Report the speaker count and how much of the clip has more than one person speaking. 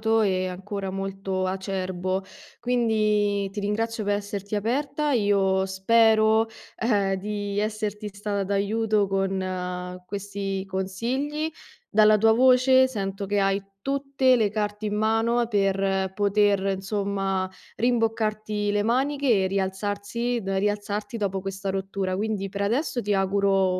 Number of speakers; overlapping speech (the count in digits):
1, no overlap